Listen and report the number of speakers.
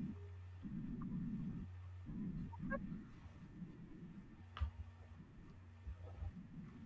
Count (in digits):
0